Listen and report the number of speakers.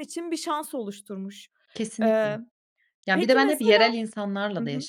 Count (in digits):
2